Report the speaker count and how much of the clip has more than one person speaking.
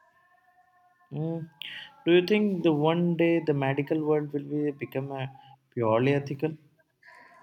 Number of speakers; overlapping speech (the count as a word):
one, no overlap